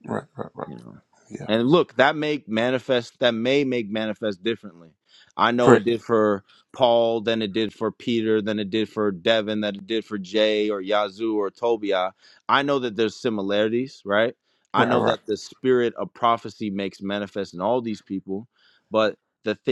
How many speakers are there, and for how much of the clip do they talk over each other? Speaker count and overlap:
2, about 3%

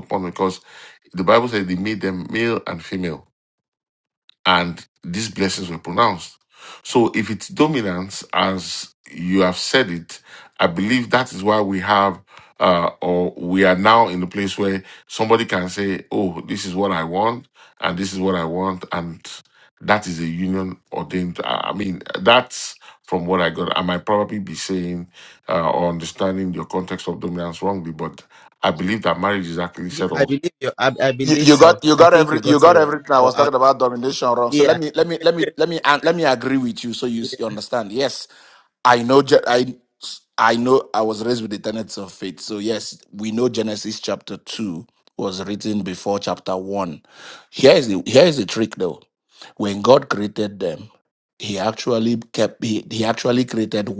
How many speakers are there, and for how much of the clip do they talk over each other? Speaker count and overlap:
3, about 5%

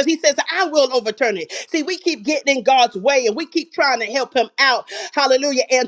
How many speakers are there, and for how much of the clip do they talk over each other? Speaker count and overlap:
1, no overlap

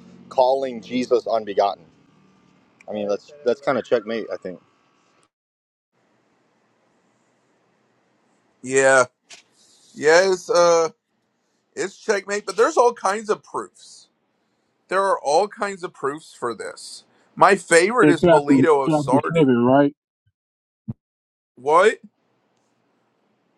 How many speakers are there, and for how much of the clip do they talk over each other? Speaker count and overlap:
3, about 6%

